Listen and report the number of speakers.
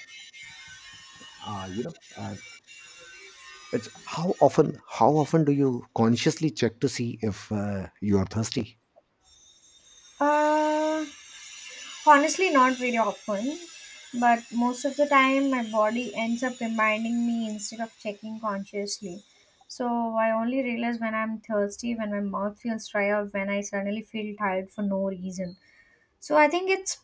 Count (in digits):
2